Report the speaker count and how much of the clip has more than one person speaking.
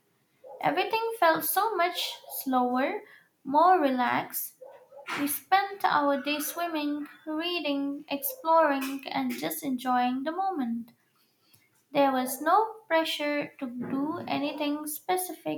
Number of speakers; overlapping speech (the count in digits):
1, no overlap